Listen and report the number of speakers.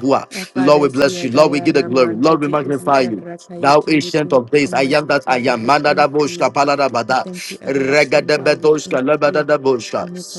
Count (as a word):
two